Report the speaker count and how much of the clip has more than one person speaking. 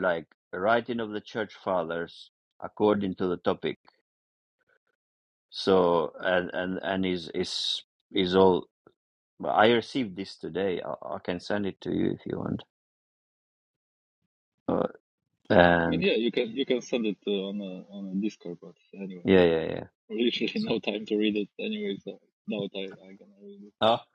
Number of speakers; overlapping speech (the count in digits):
2, about 3%